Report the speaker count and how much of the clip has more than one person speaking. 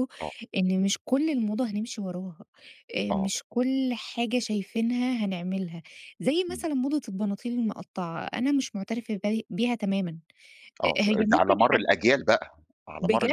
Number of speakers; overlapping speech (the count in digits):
2, about 12%